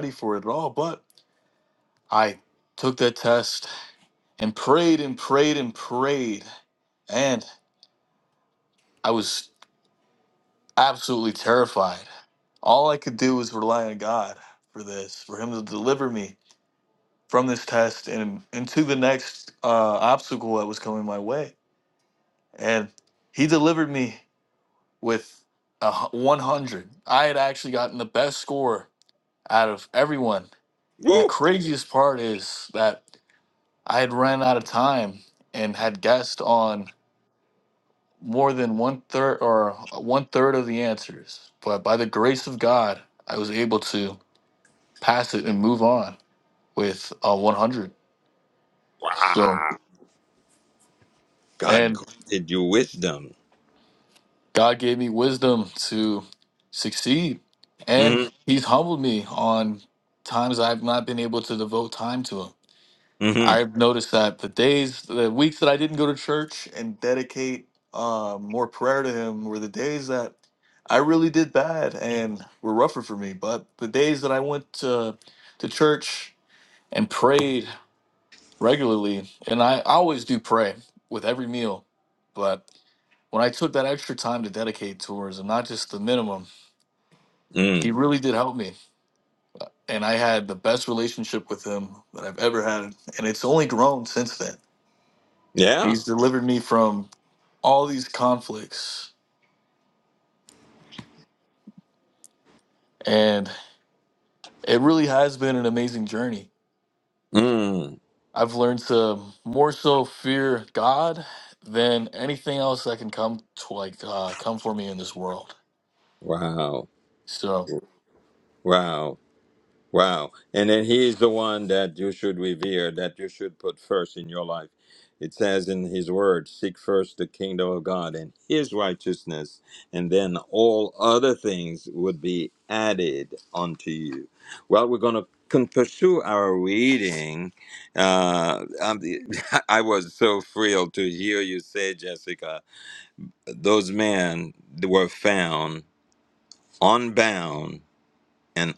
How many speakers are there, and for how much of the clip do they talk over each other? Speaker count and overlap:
2, about 1%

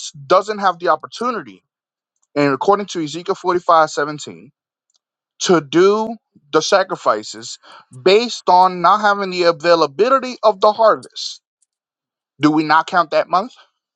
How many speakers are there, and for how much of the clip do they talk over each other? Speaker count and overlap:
1, no overlap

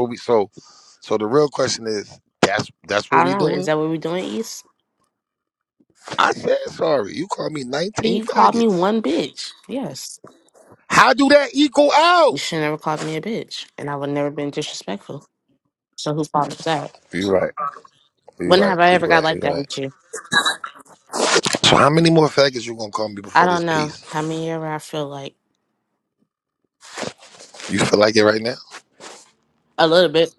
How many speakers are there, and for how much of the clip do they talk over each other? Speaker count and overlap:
2, about 11%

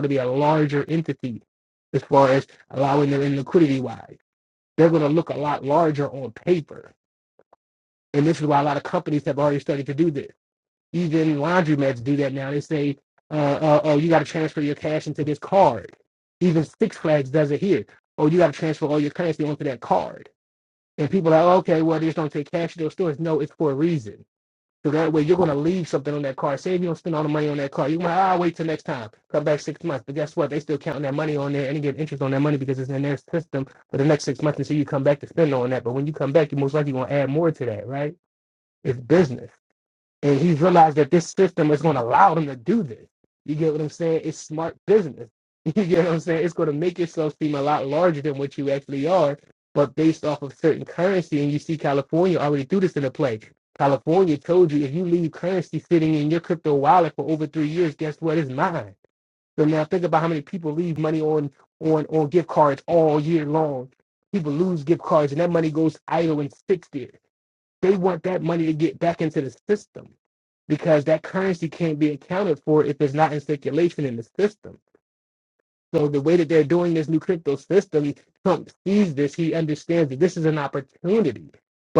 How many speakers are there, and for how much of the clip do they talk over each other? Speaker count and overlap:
1, no overlap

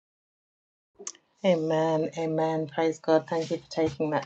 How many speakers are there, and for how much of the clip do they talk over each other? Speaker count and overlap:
1, no overlap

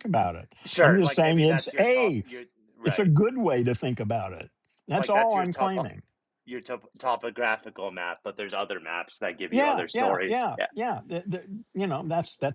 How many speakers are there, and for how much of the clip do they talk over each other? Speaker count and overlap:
2, about 29%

